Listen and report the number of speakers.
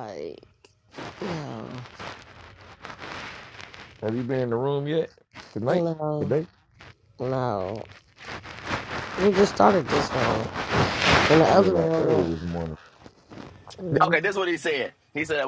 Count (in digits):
3